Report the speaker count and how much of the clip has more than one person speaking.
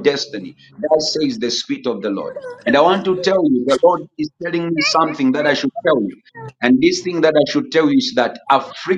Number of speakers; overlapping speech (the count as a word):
one, no overlap